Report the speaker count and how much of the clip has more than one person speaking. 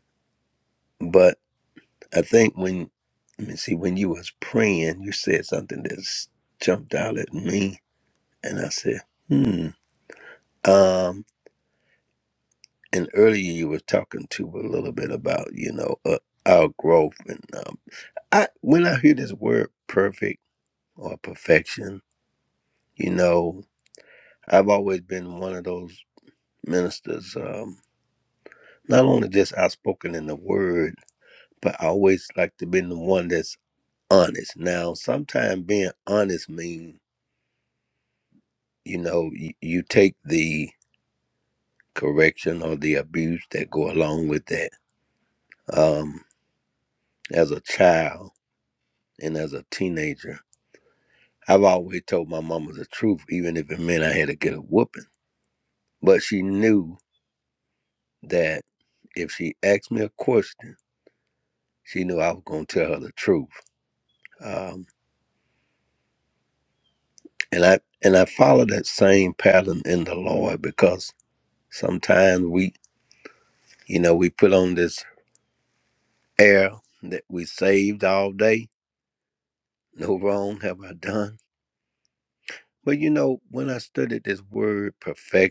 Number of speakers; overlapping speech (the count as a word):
one, no overlap